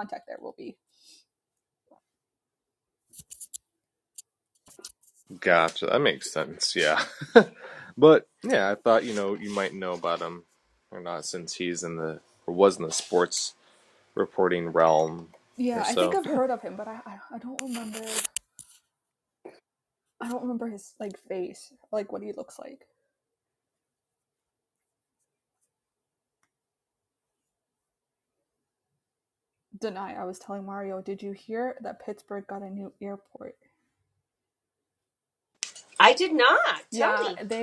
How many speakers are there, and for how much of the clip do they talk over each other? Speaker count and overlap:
3, about 3%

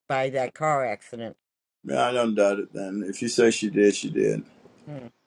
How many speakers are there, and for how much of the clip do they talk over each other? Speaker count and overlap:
2, no overlap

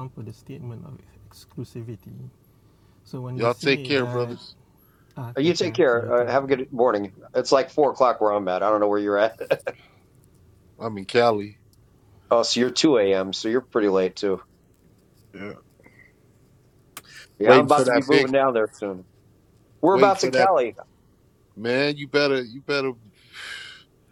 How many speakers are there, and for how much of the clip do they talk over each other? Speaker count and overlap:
3, about 14%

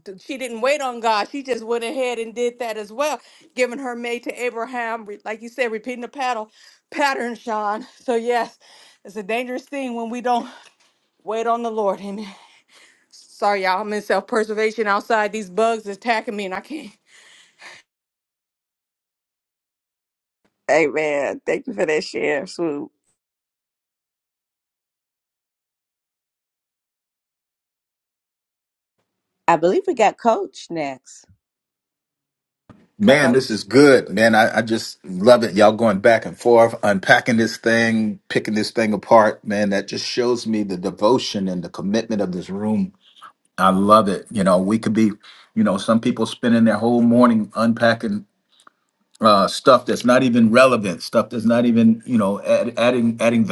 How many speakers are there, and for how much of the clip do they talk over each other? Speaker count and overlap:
3, under 1%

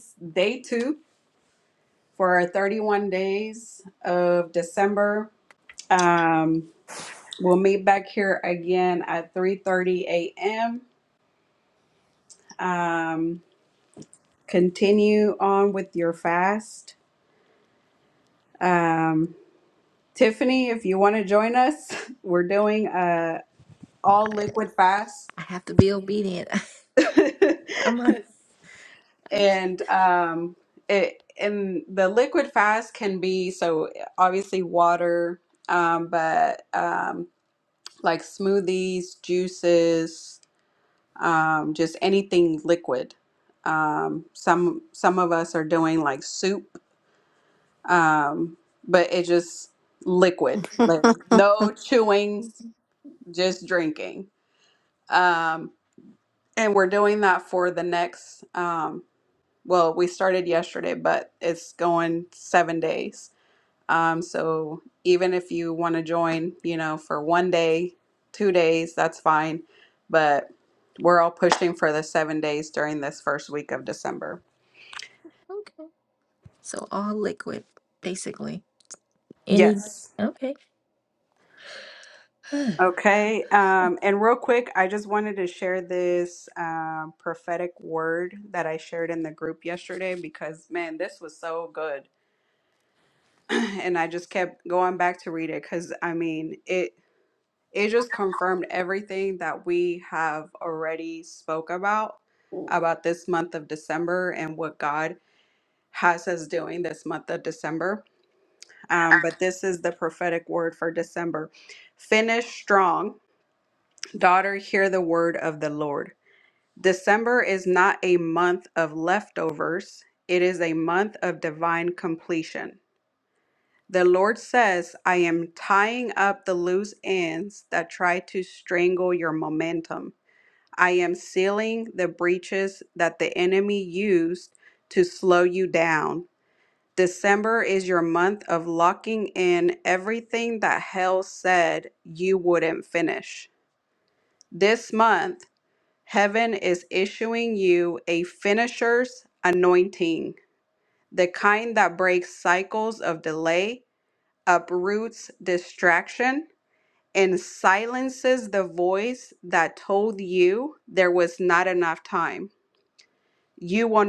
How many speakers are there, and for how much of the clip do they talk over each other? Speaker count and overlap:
2, under 1%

